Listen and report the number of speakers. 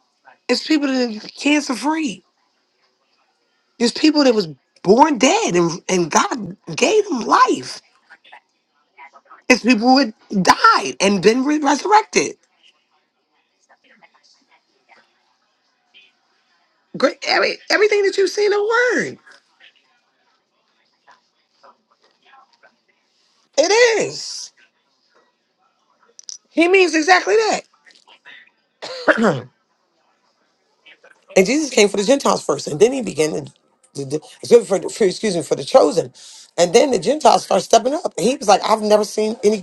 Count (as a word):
one